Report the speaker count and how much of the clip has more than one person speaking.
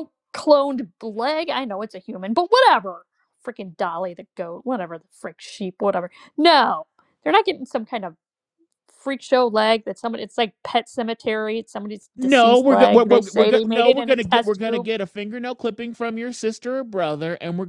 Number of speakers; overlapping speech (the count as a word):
two, about 15%